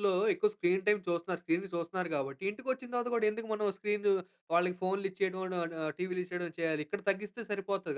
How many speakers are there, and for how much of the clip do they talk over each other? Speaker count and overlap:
1, no overlap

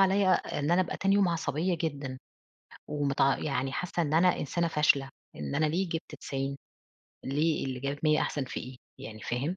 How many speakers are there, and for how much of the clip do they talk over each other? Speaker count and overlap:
1, no overlap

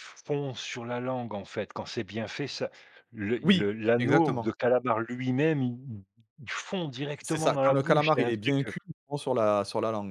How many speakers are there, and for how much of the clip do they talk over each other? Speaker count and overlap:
2, about 21%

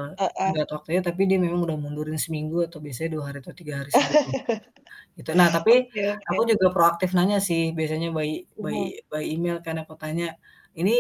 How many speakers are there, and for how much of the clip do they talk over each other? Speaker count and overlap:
2, about 7%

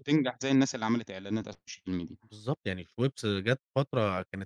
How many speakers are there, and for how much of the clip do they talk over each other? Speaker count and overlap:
2, no overlap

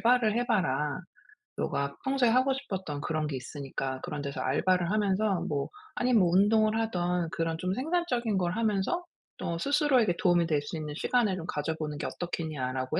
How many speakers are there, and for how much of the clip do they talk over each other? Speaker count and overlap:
1, no overlap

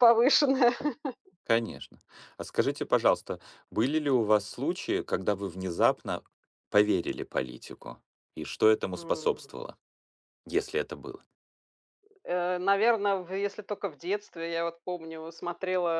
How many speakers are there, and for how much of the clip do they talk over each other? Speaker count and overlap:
2, about 3%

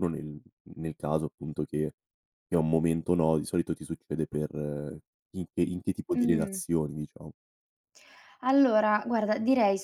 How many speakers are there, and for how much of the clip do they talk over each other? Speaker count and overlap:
2, about 4%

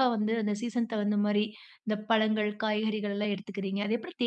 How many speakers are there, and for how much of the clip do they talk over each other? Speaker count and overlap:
1, no overlap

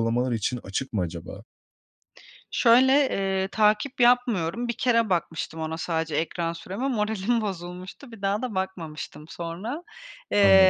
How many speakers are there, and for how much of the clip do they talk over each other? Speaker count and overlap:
2, about 3%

